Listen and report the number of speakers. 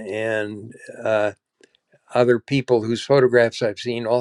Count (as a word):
one